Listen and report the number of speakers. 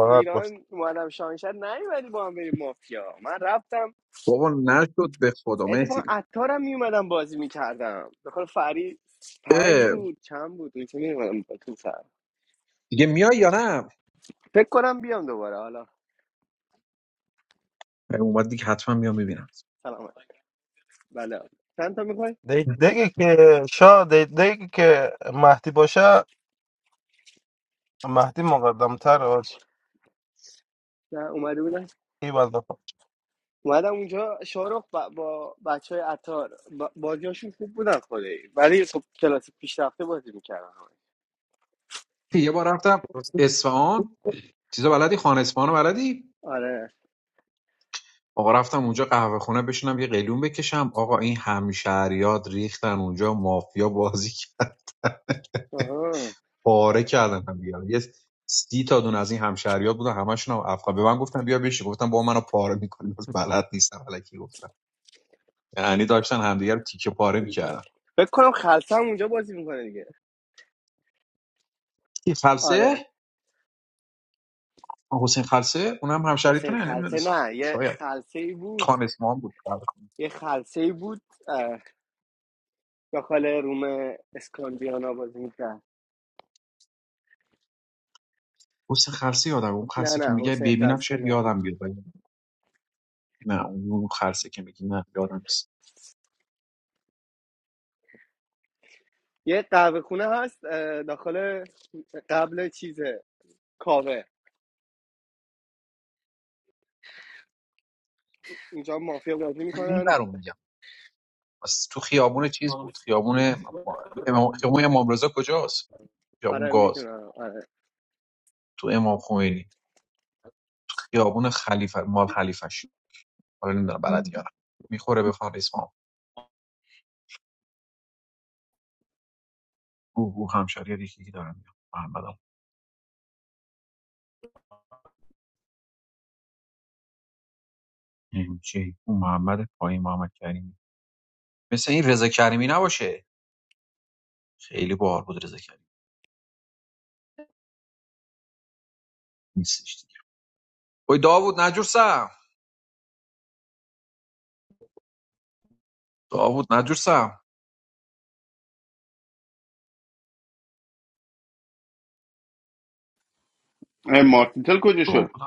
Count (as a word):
four